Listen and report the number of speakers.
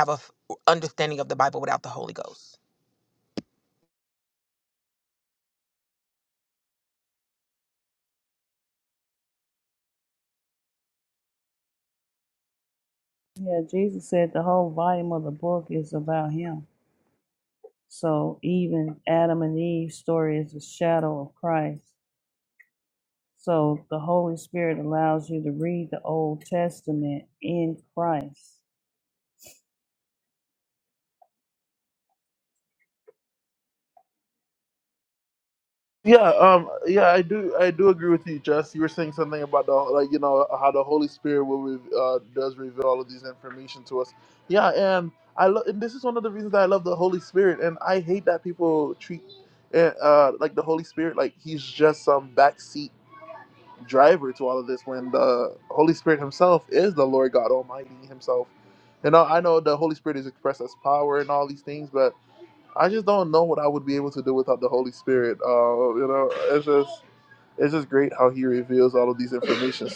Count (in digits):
3